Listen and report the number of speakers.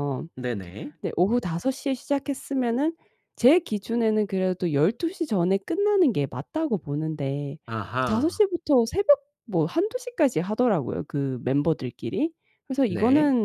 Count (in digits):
2